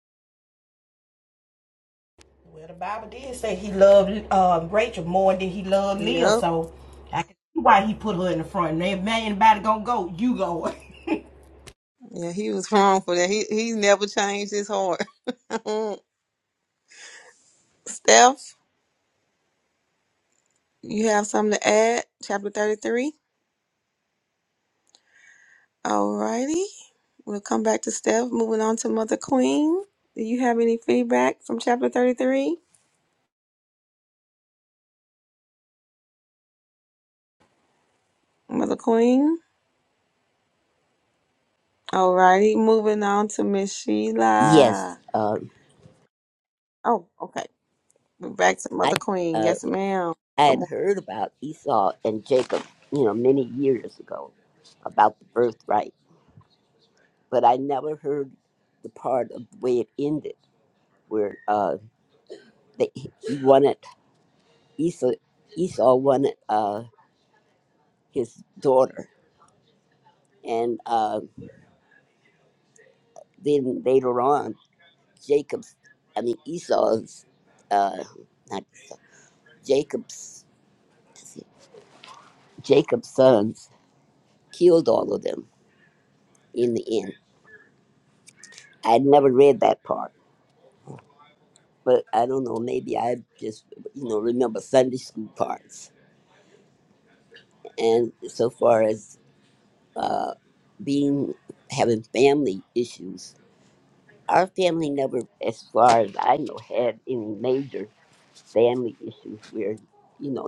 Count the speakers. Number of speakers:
three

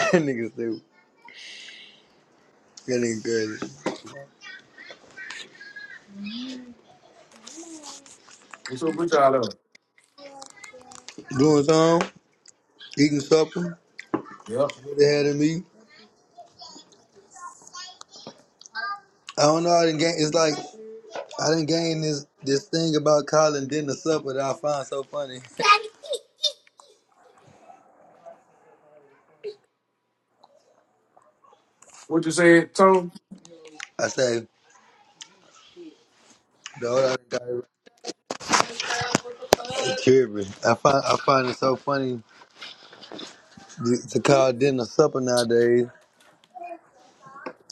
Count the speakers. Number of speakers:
two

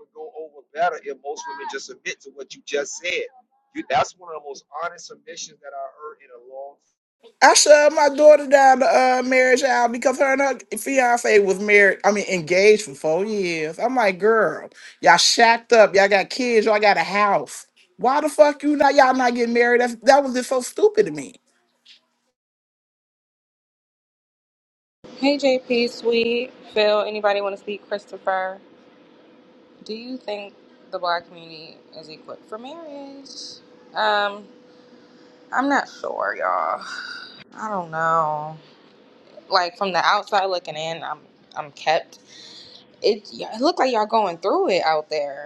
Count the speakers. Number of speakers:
three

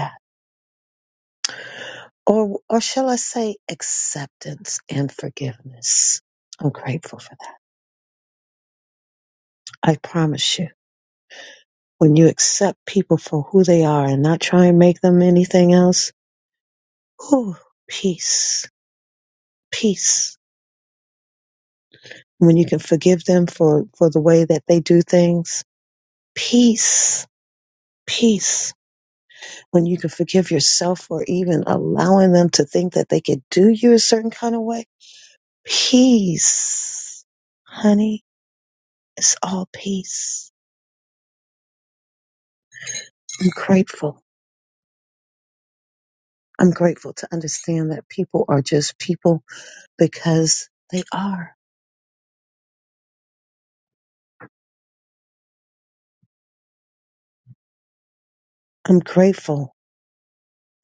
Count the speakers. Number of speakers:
one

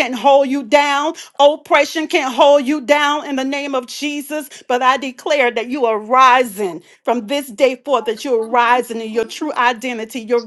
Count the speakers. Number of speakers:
one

